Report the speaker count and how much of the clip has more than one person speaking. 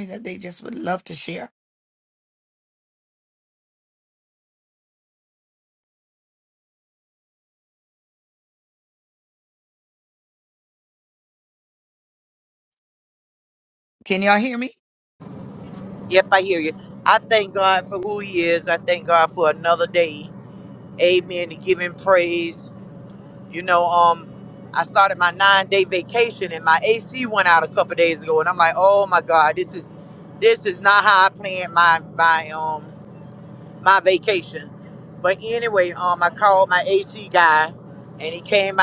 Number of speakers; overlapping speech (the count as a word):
two, no overlap